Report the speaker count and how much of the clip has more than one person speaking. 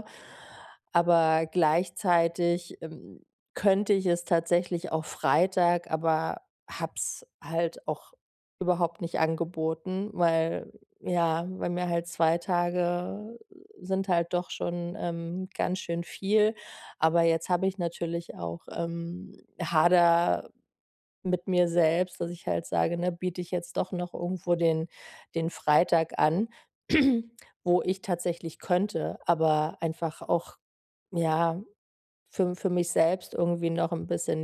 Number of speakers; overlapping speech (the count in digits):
1, no overlap